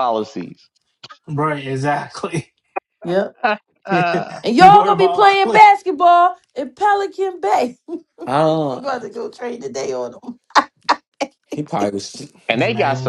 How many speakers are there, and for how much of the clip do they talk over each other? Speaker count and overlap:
four, about 19%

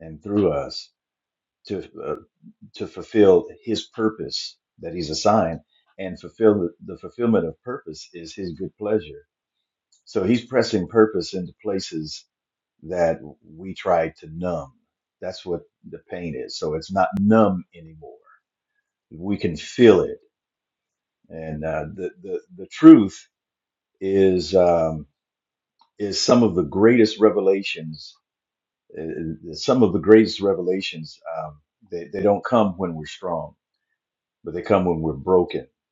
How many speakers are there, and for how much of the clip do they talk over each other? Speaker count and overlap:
one, no overlap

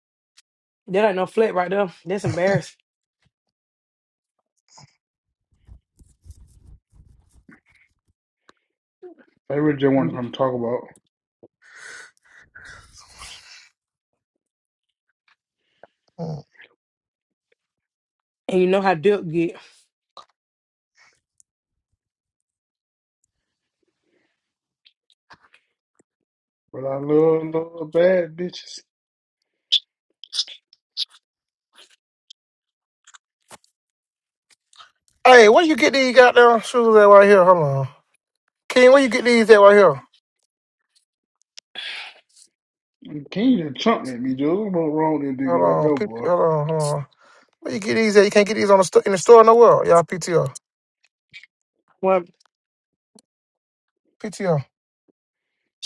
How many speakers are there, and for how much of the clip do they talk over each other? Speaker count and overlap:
three, about 2%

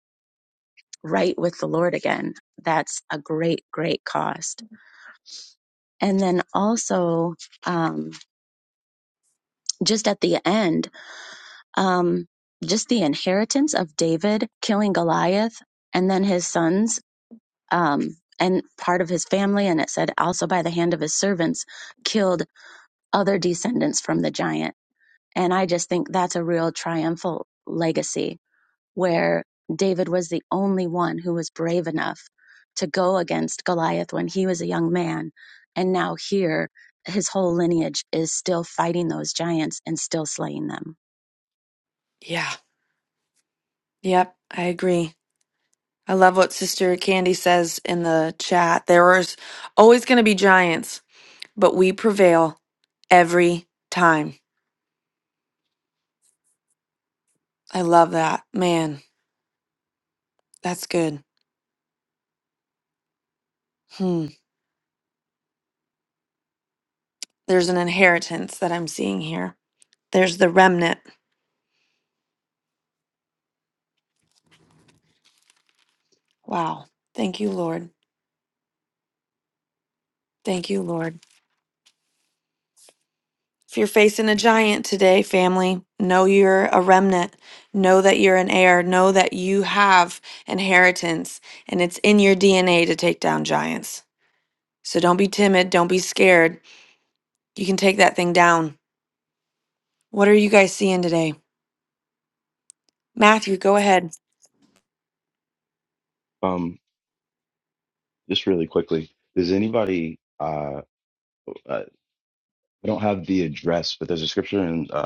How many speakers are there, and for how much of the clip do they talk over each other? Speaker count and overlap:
three, no overlap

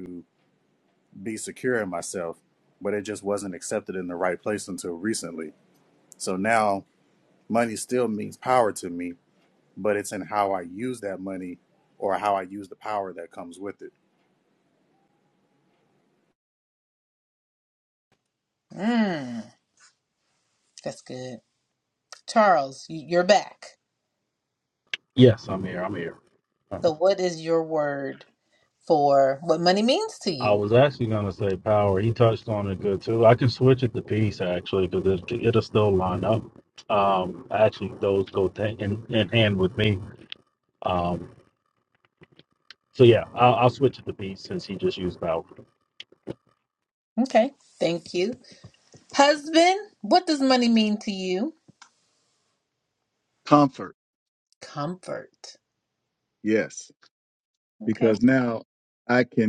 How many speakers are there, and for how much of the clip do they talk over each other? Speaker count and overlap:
four, about 1%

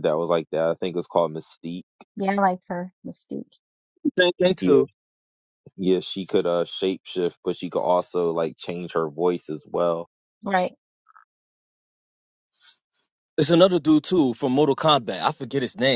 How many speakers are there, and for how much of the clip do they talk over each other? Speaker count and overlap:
three, about 1%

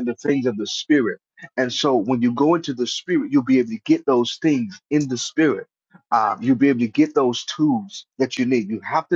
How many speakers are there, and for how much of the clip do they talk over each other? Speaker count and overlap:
one, no overlap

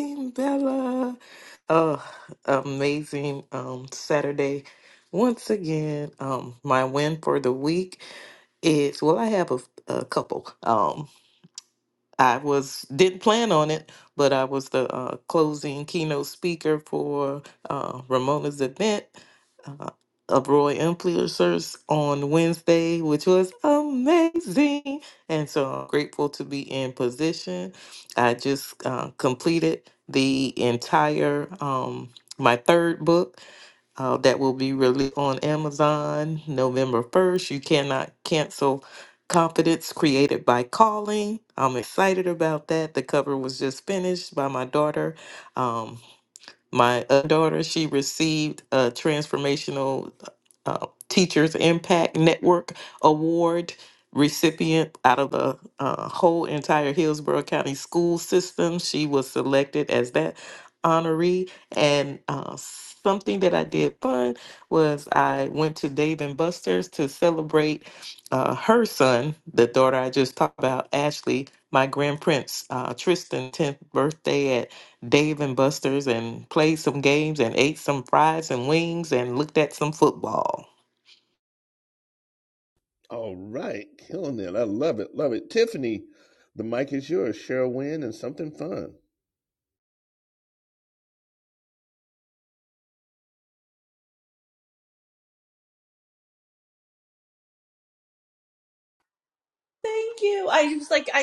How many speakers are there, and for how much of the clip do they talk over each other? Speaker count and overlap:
three, no overlap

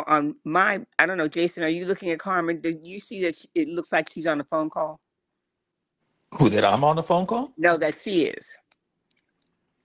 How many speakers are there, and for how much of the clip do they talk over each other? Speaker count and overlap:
two, no overlap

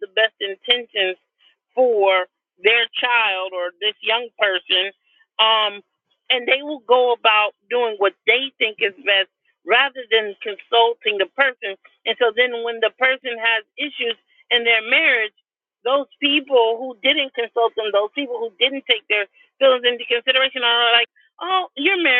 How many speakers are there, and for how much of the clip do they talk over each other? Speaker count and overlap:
one, no overlap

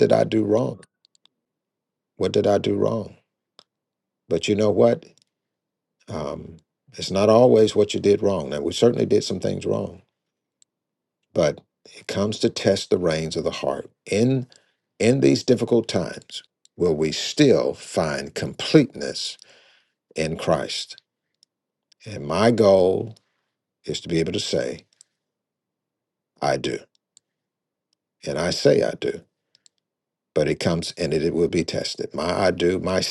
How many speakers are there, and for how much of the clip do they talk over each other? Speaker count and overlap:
one, no overlap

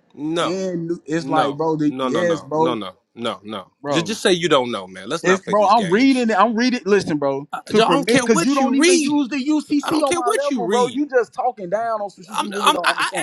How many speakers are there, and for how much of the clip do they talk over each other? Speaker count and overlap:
two, about 52%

